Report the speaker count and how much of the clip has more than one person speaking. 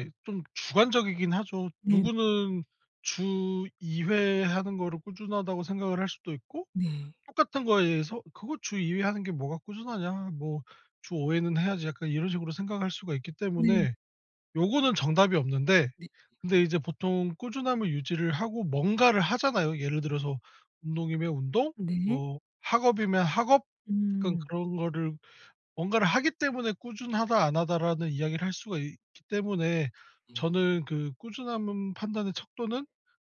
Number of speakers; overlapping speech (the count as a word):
two, about 3%